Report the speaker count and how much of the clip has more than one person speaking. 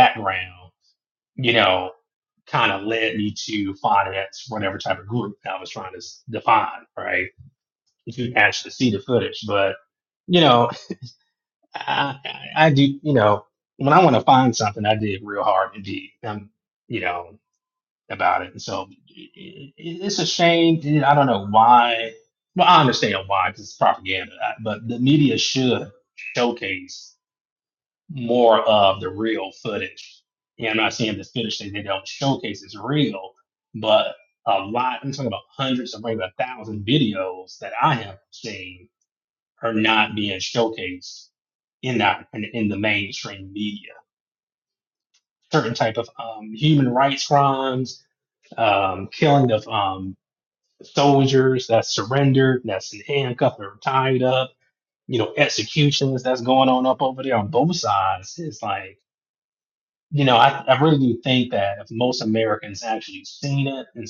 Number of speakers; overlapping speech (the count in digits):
1, no overlap